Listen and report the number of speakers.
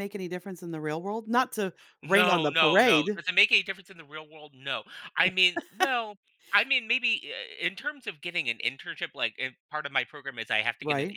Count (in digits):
2